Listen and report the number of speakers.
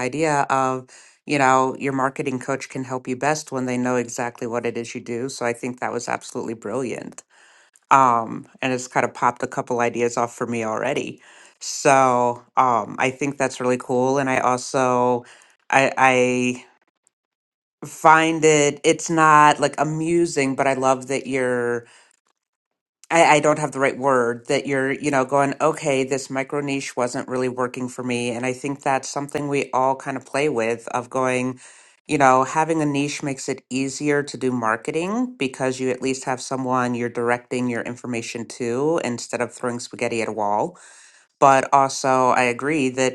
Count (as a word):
one